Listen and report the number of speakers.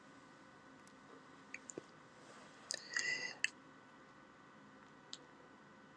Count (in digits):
0